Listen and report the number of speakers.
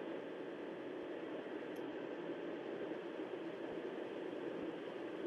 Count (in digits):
0